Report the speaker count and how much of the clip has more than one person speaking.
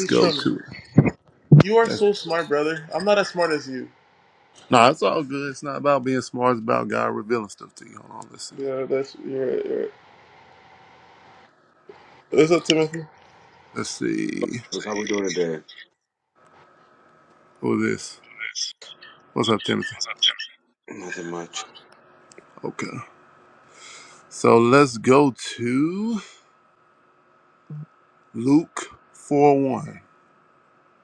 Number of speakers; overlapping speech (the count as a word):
three, about 2%